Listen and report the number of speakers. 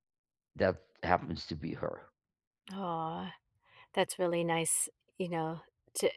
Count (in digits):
2